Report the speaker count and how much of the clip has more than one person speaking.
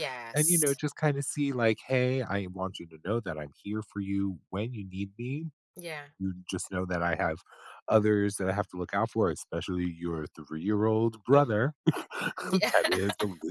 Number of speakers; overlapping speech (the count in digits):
2, about 2%